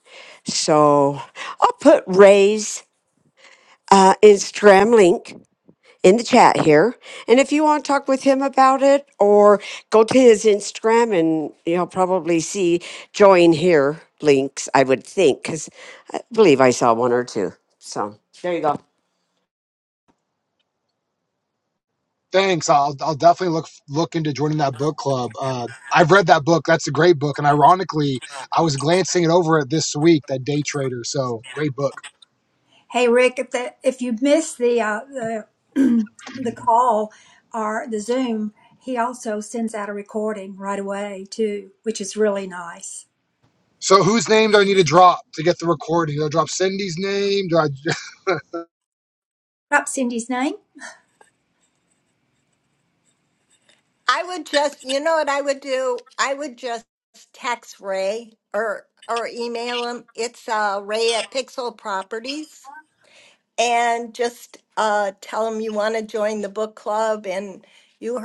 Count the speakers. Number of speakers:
four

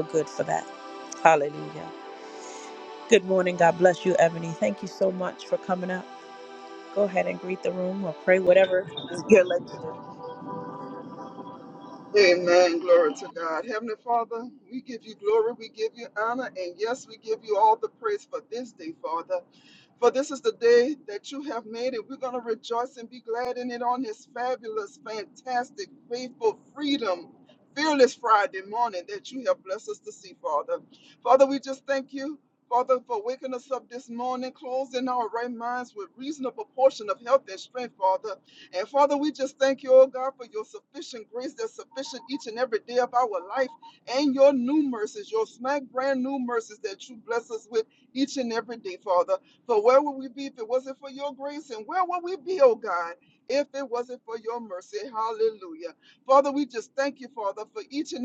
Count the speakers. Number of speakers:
two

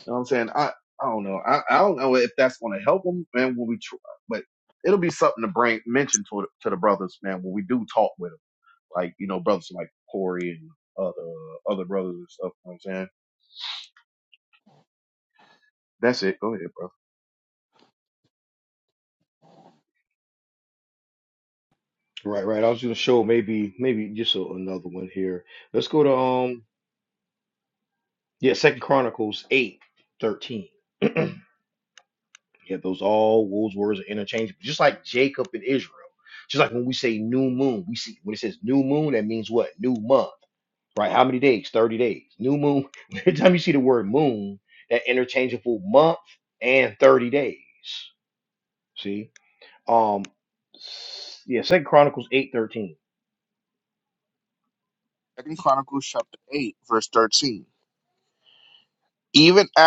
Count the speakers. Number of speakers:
three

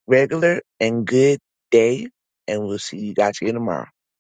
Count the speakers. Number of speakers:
one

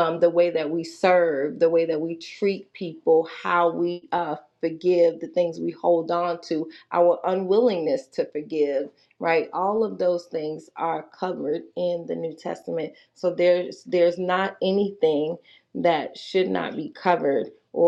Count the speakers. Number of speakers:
one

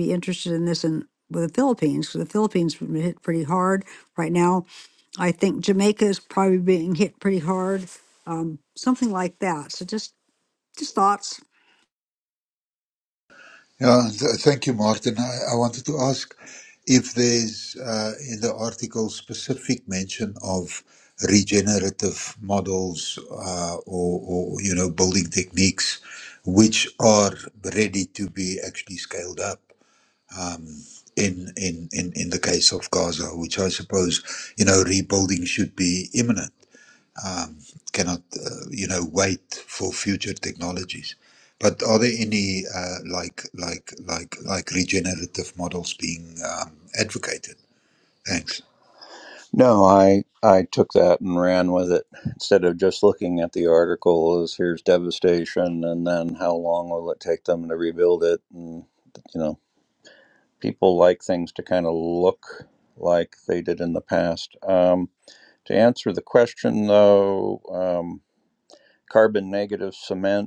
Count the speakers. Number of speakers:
three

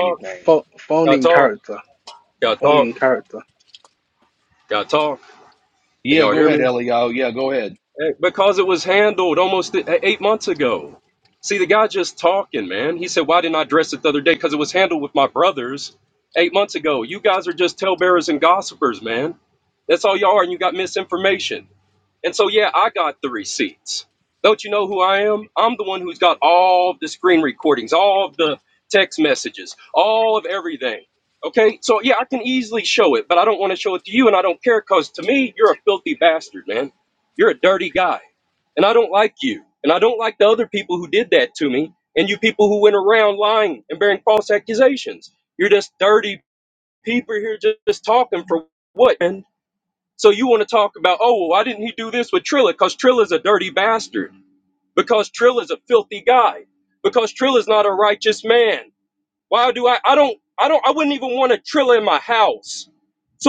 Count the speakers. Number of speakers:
three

